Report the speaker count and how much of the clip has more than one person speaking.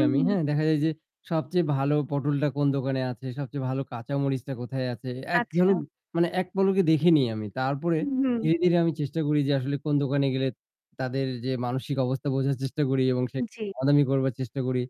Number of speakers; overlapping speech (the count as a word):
two, about 6%